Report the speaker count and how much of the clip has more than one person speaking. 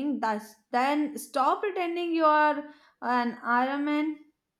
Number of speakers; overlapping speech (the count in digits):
1, no overlap